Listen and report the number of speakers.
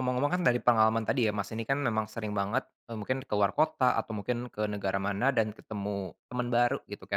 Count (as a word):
one